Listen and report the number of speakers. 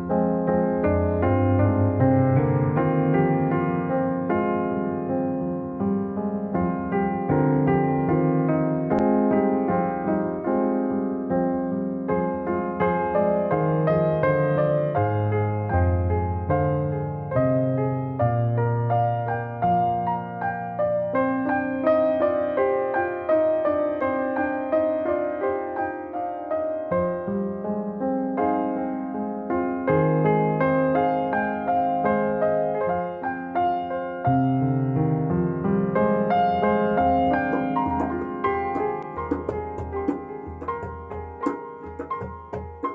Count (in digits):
0